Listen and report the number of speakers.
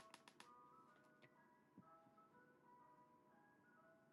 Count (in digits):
0